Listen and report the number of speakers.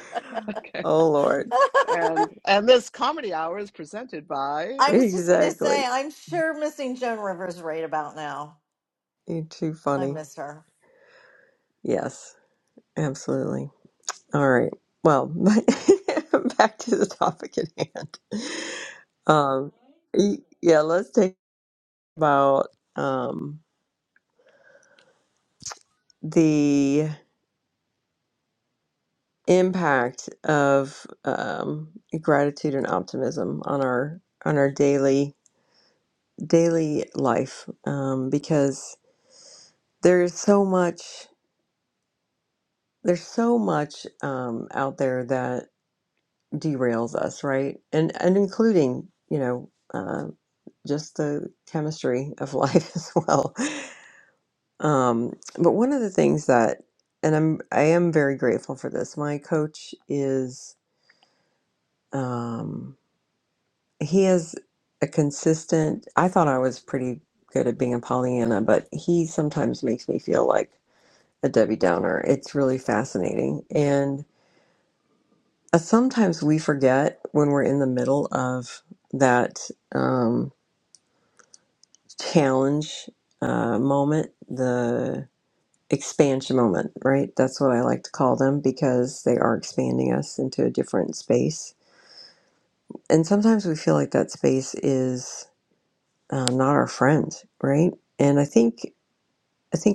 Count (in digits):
3